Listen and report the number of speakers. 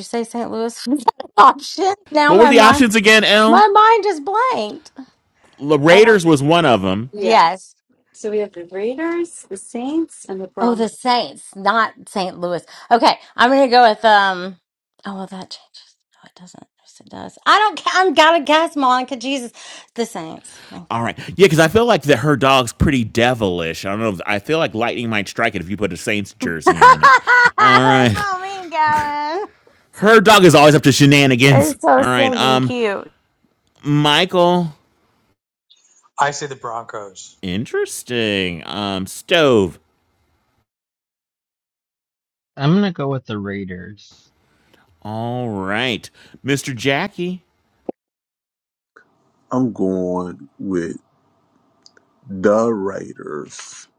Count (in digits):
6